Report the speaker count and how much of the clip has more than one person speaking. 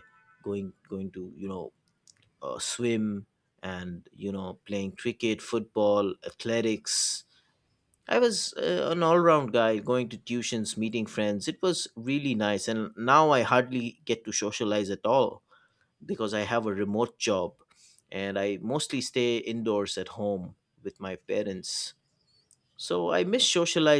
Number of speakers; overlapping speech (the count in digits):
1, no overlap